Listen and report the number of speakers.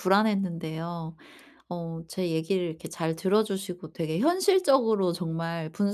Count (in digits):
1